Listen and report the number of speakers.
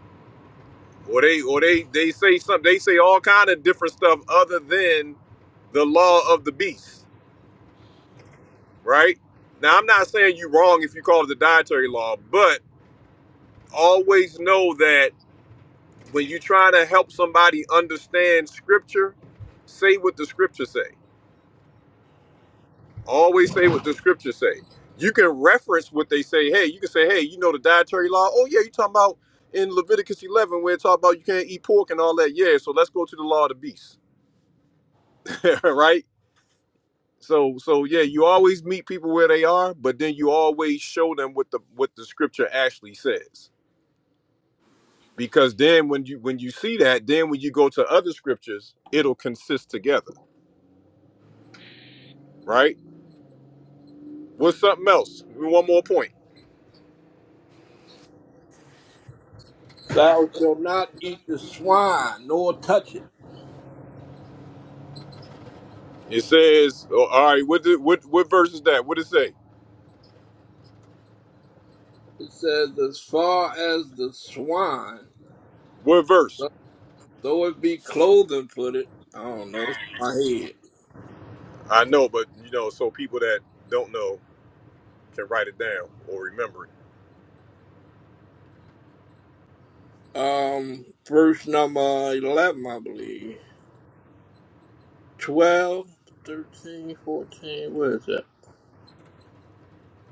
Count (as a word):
two